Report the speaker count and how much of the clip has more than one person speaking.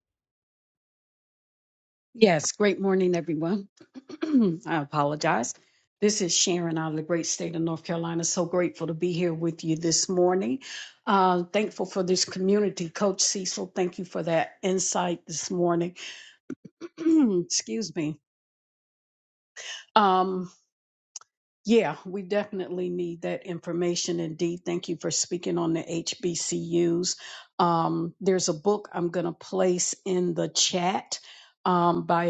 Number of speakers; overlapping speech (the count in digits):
1, no overlap